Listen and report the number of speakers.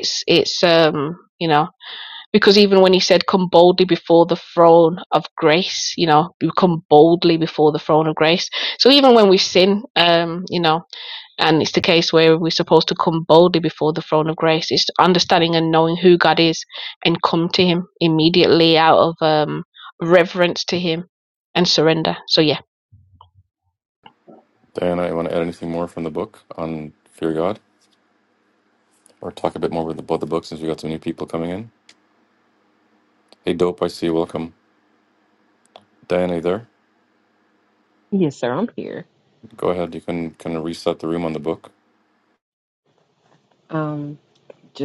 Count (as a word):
three